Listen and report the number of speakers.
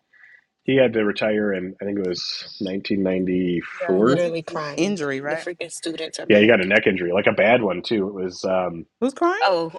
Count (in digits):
3